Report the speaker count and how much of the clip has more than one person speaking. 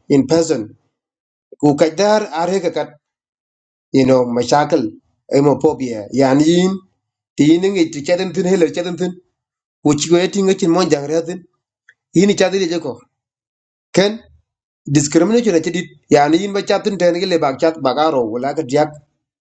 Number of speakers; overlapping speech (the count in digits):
1, no overlap